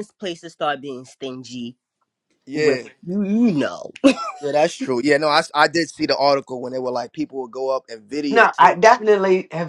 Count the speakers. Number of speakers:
3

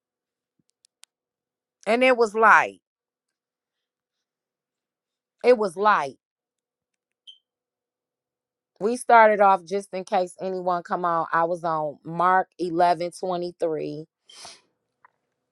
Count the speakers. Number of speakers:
1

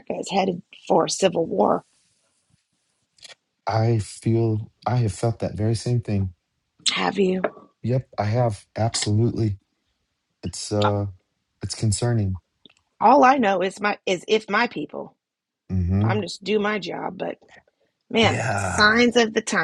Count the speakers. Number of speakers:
2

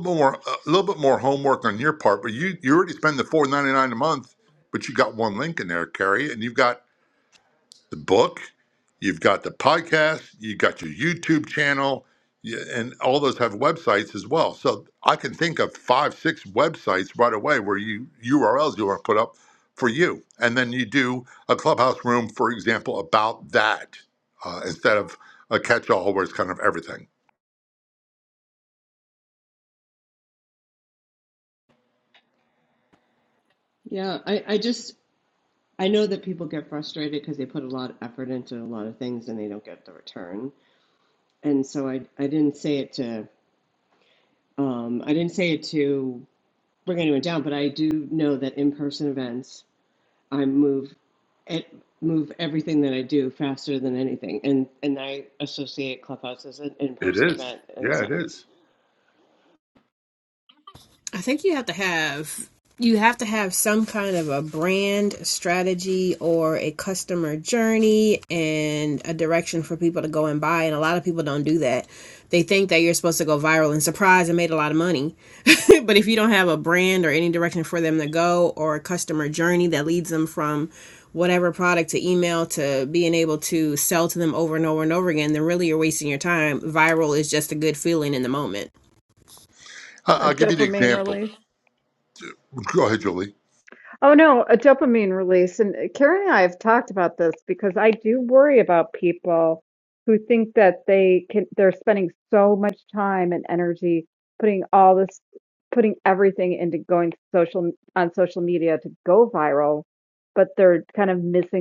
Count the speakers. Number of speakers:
4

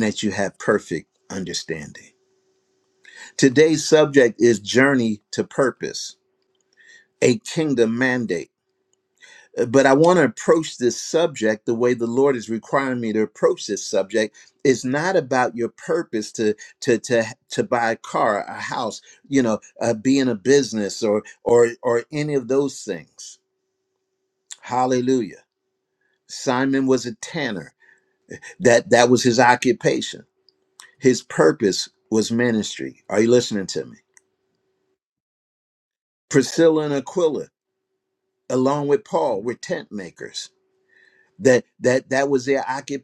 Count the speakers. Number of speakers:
1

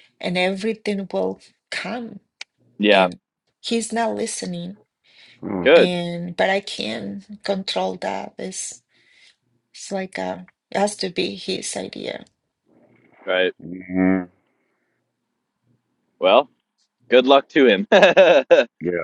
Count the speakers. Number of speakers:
3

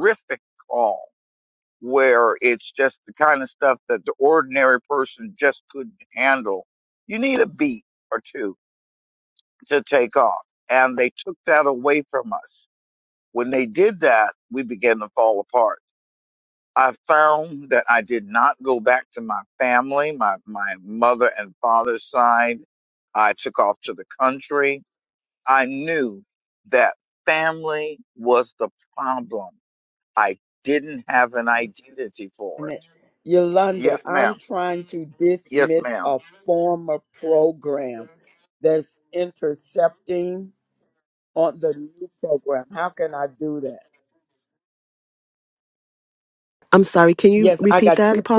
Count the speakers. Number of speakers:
3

